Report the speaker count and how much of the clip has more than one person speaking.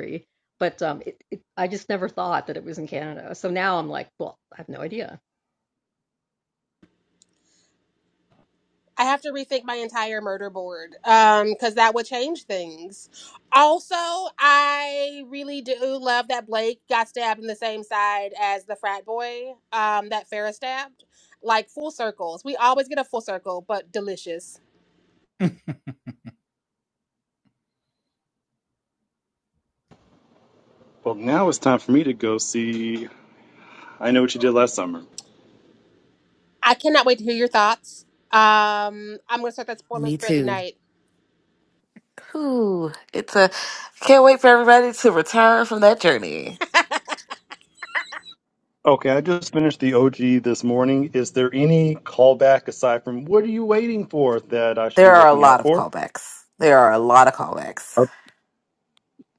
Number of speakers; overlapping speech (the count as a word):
four, about 3%